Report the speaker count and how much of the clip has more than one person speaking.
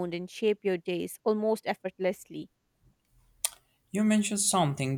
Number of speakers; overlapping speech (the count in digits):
2, no overlap